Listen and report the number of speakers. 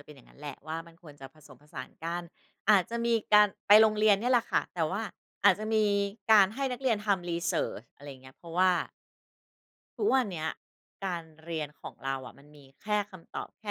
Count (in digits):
1